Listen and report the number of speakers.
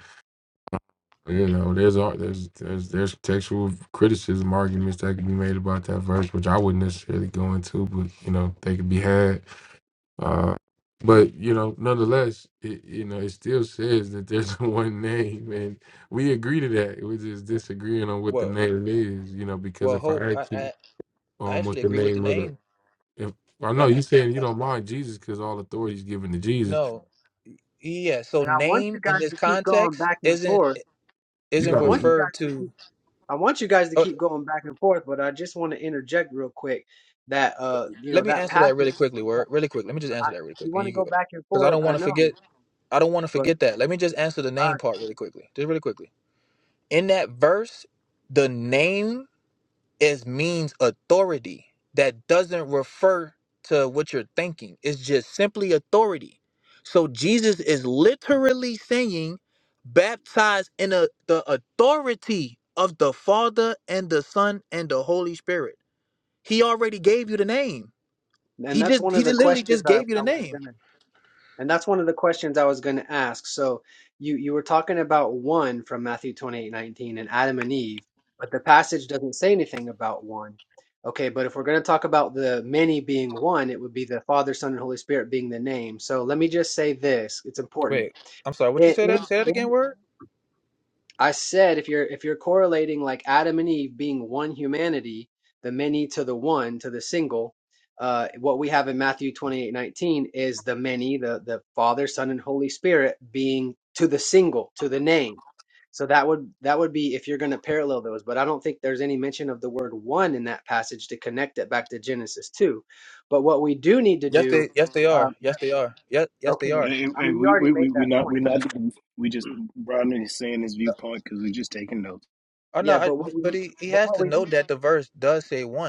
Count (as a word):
four